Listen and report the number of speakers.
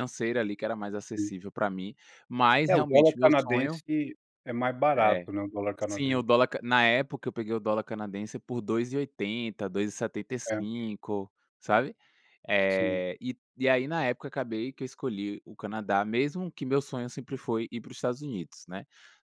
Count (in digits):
2